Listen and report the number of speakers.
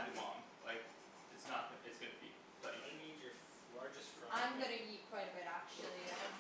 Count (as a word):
three